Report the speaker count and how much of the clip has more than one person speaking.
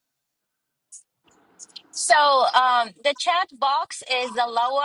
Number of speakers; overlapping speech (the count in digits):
1, no overlap